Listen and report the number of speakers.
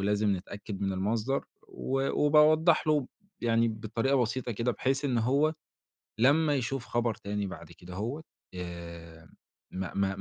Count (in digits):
1